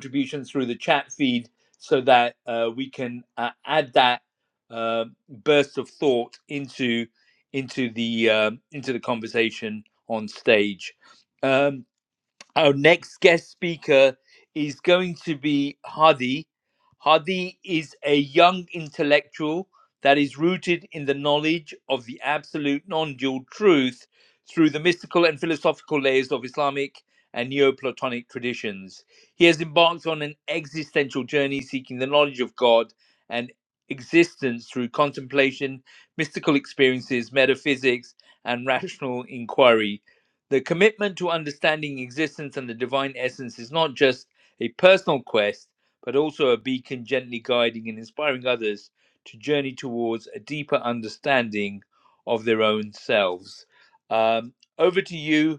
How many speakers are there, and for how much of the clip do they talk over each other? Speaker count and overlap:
1, no overlap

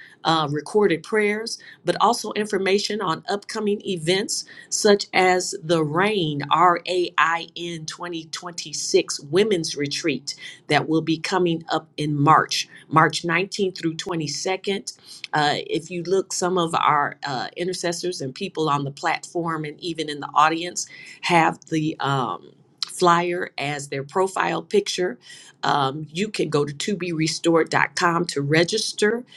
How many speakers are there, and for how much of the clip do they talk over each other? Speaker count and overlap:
1, no overlap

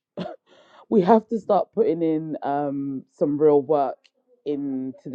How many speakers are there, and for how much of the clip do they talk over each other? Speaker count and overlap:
1, no overlap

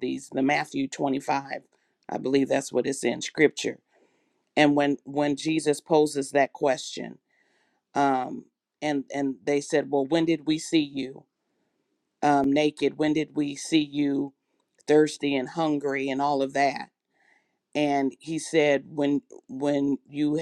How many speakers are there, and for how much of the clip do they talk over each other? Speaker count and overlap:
1, no overlap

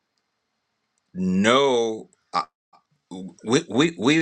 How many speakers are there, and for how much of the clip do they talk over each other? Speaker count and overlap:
1, no overlap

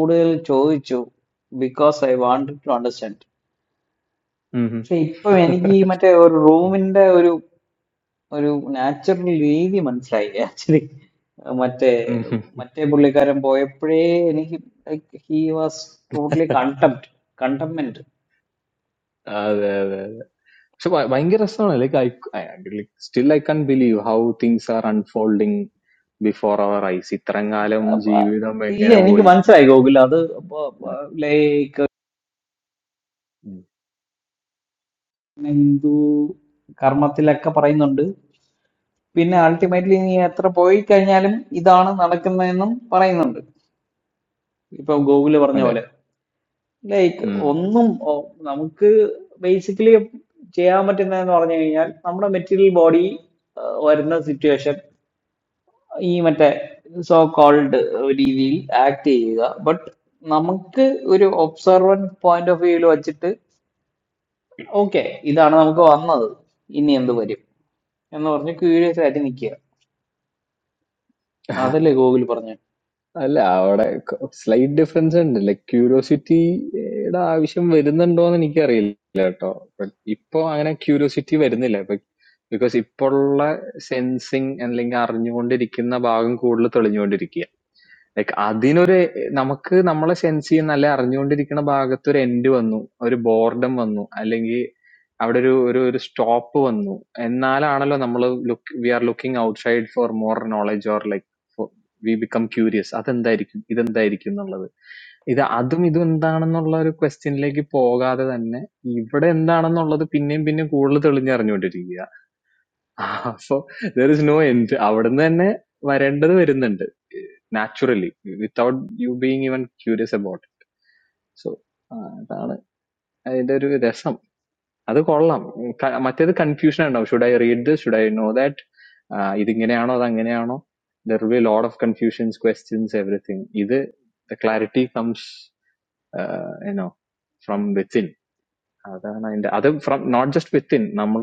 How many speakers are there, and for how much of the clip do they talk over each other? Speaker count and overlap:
2, under 1%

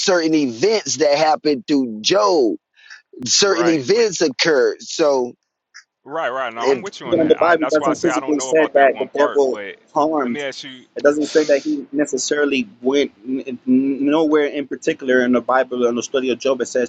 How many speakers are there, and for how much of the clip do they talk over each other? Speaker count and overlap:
3, about 22%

